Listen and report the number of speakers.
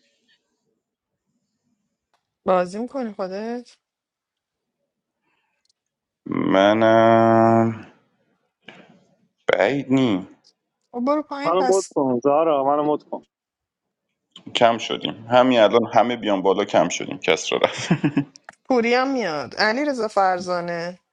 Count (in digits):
3